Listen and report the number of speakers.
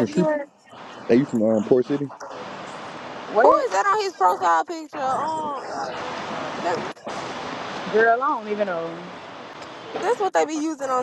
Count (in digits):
3